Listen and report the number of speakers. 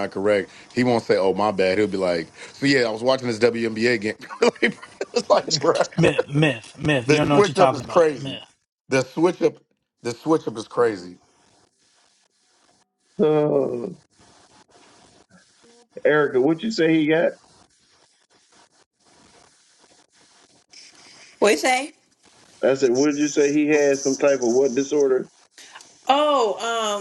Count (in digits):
4